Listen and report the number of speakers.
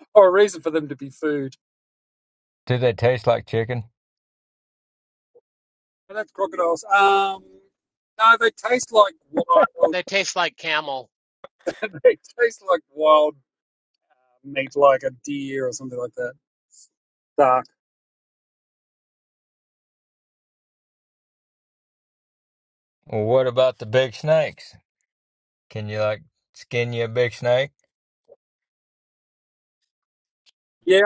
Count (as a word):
three